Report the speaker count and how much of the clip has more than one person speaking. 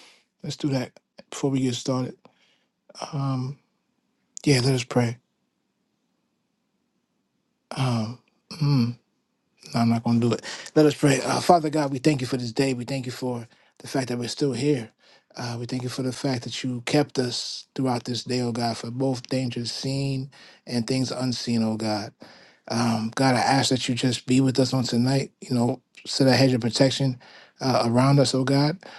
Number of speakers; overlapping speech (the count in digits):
1, no overlap